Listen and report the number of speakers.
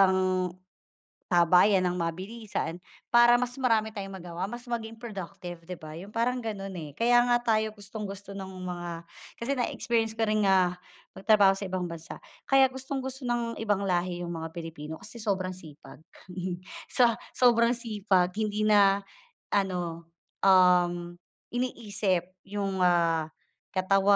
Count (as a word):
one